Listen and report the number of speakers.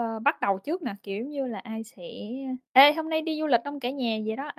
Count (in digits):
1